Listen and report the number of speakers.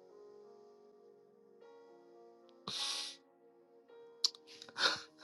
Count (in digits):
0